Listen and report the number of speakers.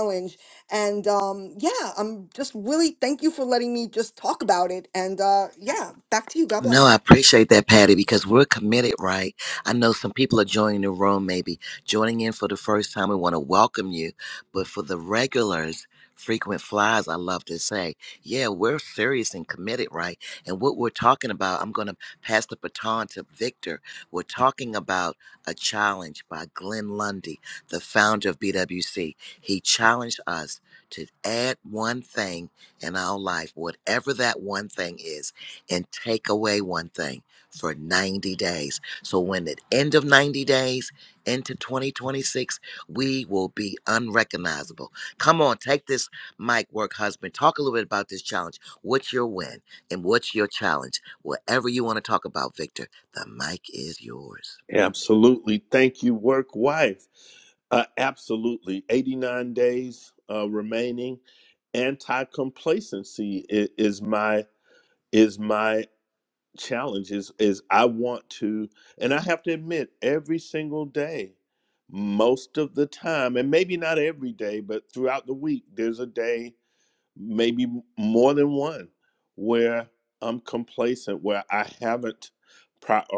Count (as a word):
three